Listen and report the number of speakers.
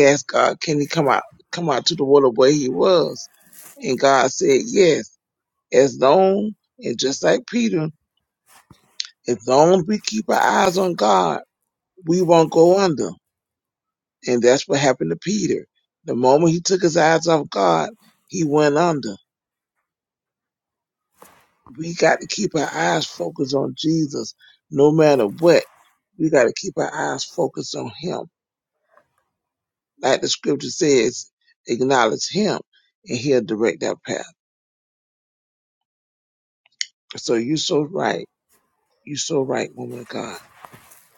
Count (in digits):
1